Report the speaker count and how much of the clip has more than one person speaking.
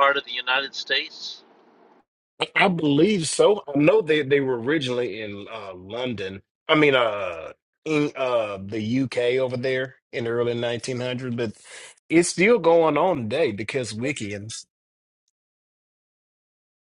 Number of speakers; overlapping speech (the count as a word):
two, no overlap